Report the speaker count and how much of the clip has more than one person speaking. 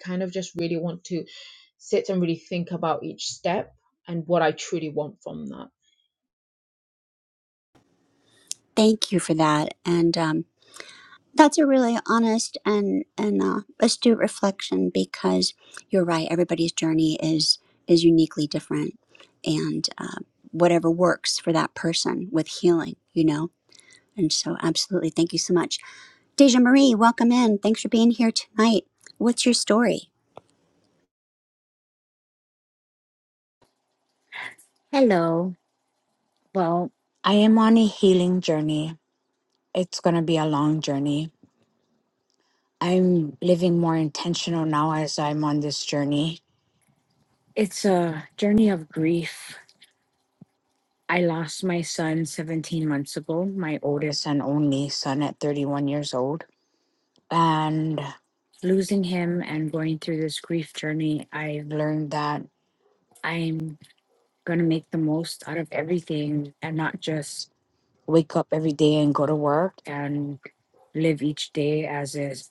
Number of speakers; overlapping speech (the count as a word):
three, no overlap